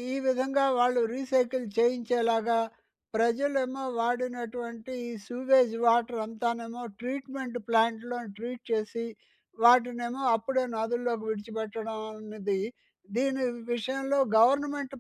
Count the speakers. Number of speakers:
1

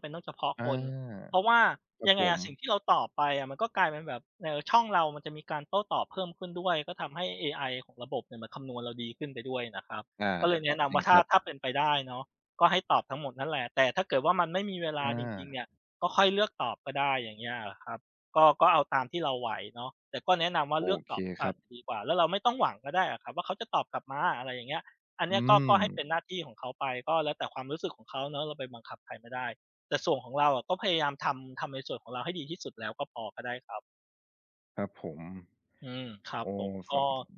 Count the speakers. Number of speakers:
2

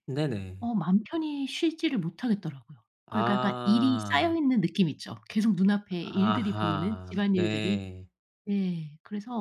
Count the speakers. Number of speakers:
2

